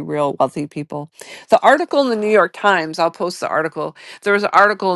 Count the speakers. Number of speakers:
1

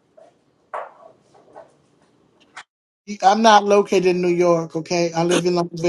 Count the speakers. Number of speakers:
1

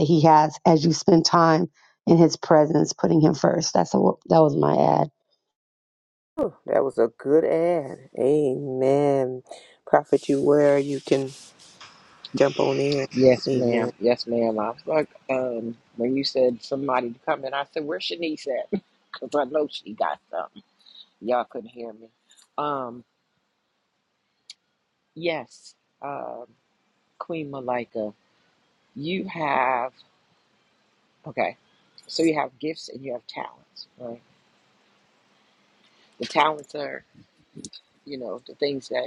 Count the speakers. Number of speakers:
3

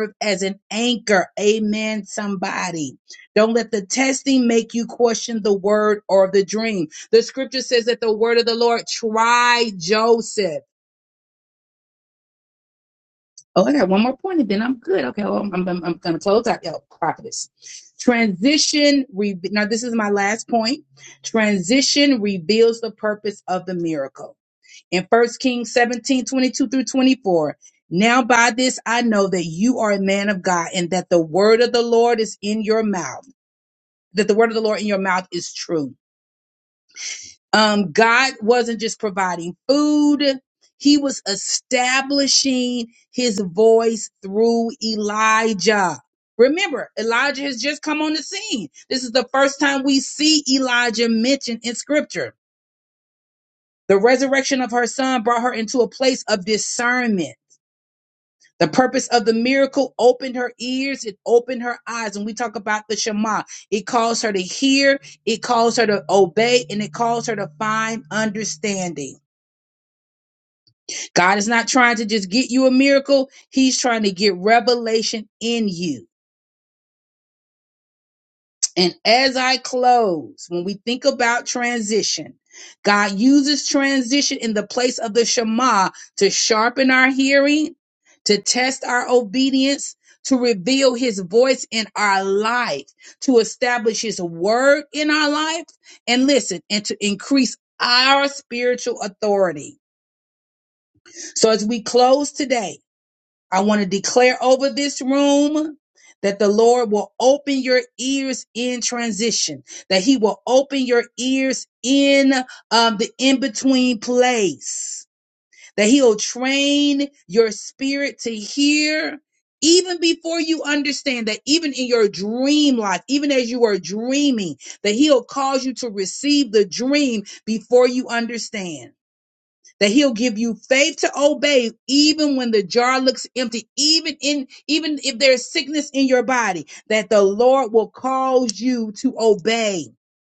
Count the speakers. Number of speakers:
1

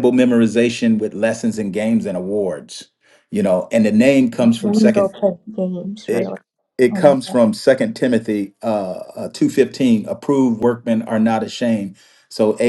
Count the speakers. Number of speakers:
2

